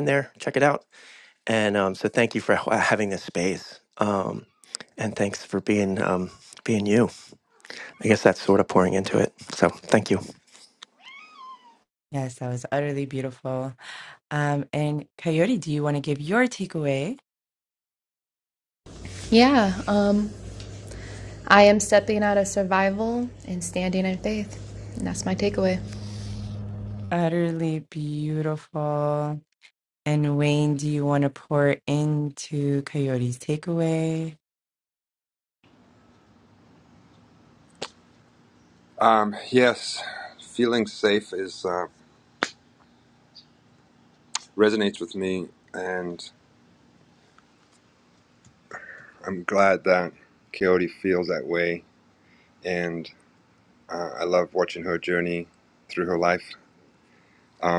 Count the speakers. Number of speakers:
4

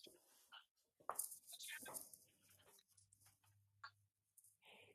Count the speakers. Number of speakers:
0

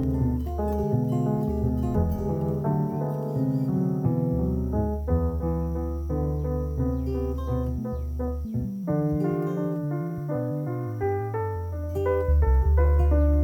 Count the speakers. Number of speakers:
0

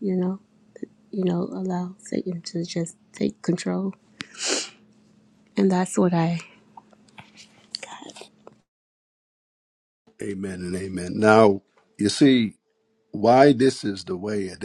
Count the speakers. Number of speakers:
2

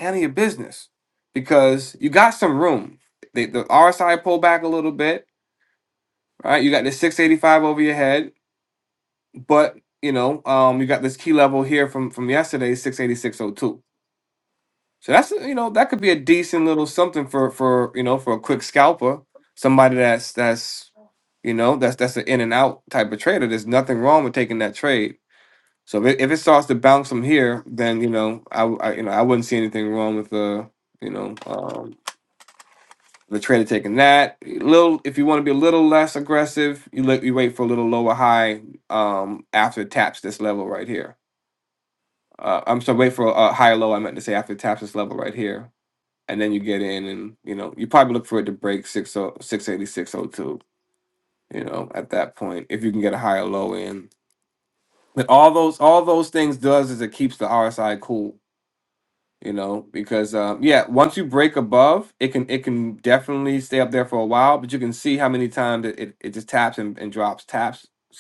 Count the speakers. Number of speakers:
1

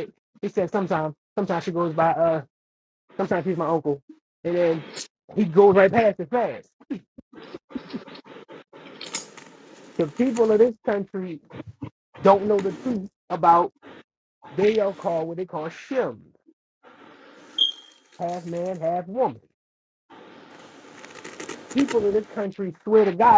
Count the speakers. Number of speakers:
1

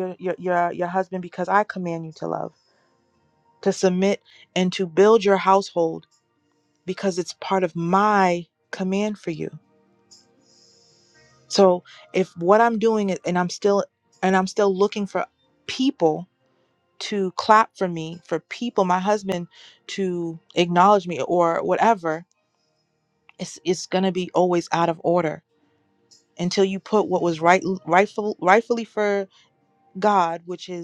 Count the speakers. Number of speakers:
1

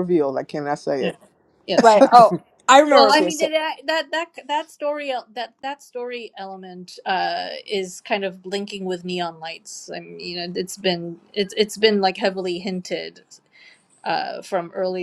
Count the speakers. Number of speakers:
3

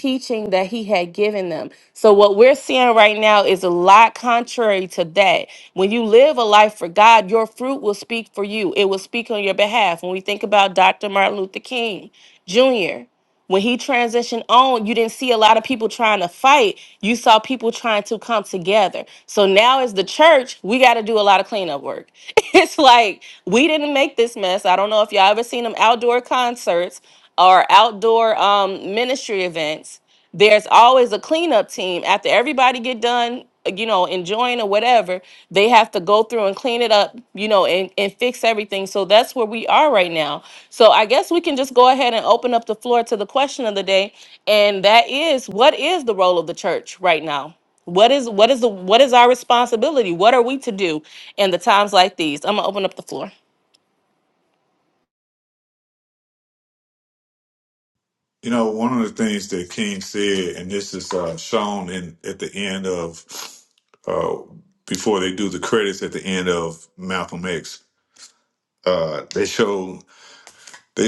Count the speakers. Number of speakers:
2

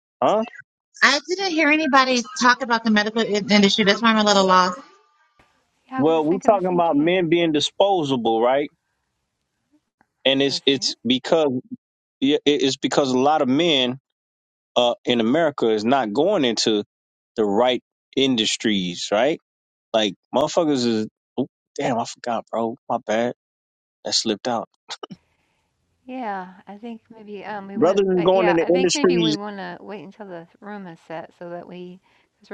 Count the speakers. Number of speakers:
3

